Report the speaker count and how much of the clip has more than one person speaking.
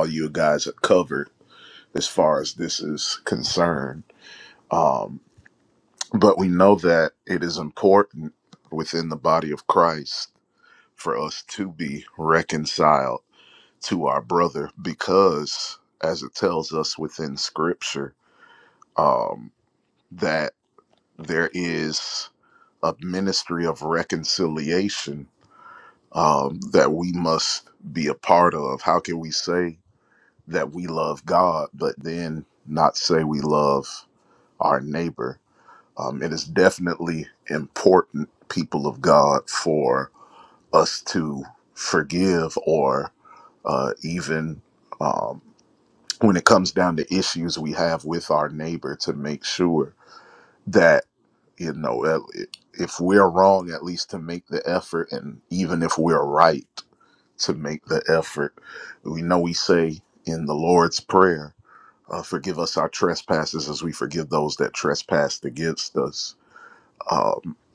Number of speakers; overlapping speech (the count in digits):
1, no overlap